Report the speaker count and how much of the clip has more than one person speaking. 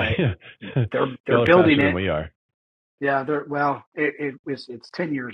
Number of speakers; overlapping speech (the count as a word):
two, about 22%